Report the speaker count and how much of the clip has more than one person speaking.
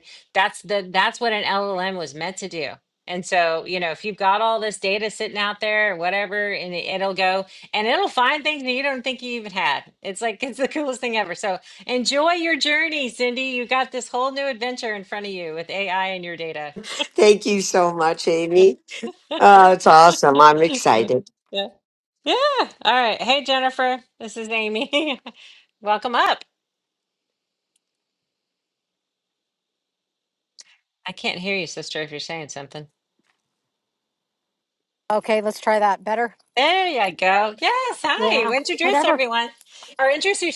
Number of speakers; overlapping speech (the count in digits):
3, about 2%